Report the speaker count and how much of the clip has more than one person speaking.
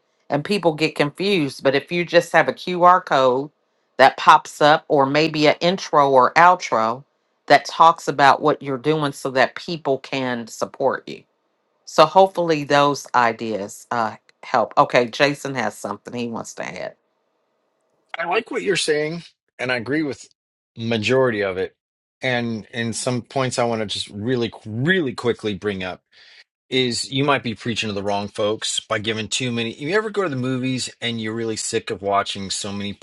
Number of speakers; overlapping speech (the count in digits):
2, no overlap